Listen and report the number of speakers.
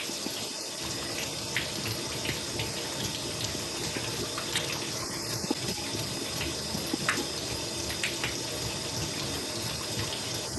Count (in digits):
0